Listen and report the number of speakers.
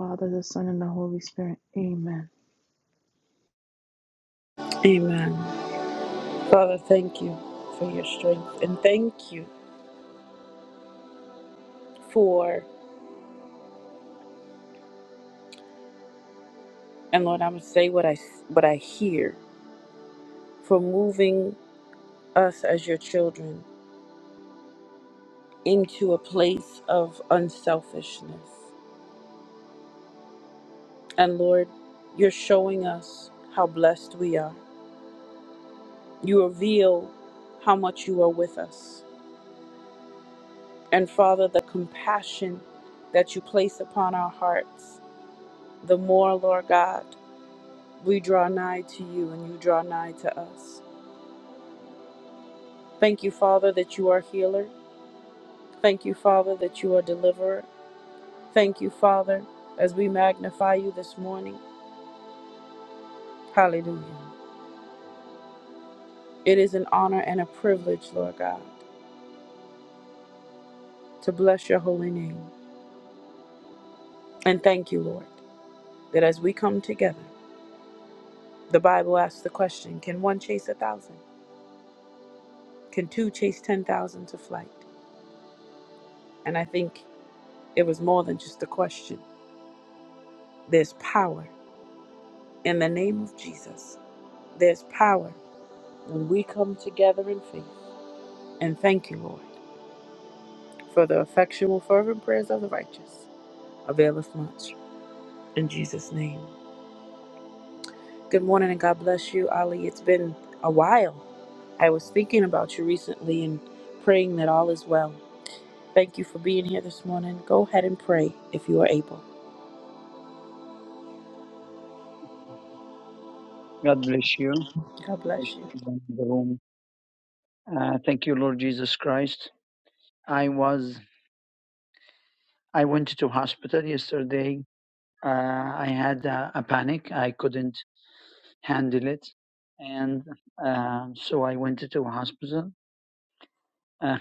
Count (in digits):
3